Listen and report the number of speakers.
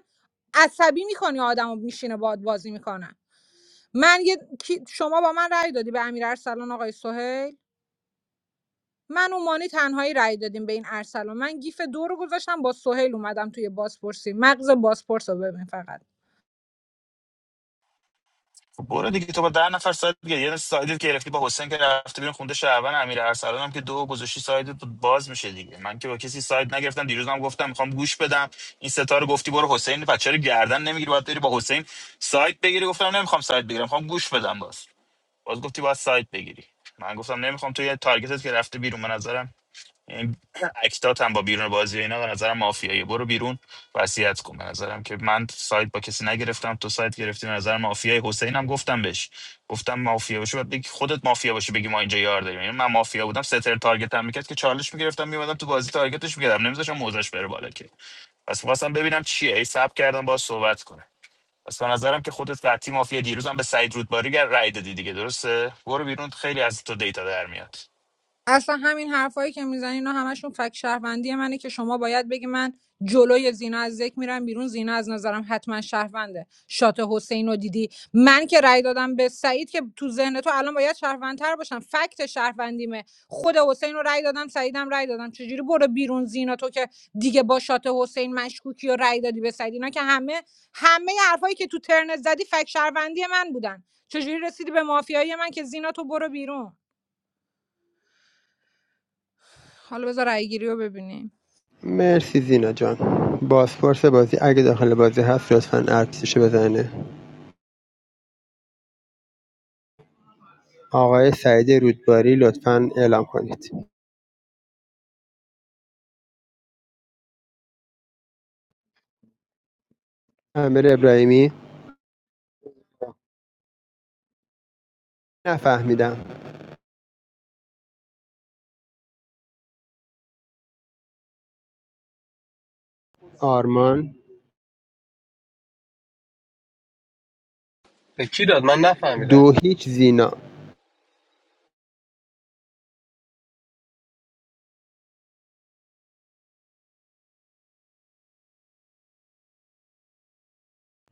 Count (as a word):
four